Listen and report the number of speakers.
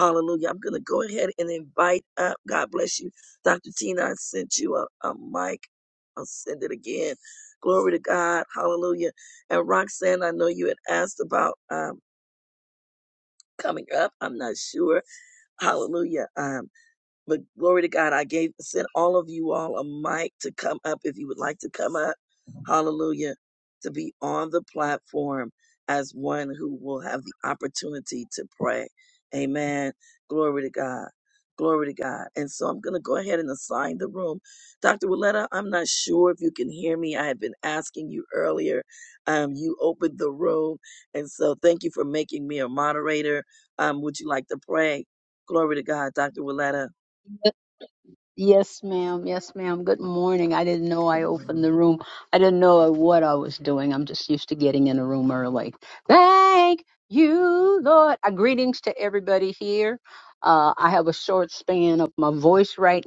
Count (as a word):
two